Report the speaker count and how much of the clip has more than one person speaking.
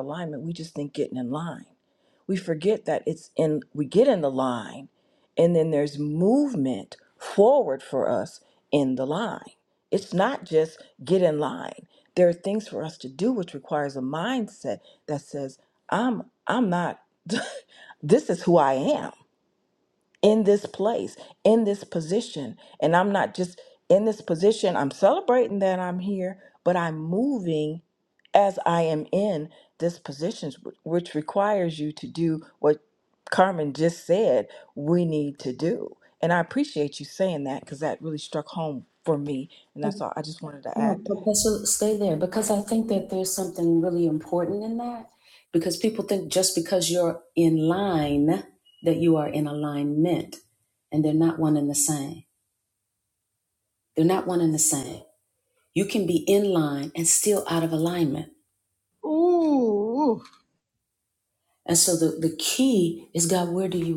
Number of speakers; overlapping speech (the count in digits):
3, about 1%